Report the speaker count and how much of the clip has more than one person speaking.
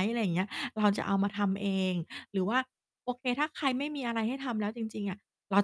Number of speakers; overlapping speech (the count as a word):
one, no overlap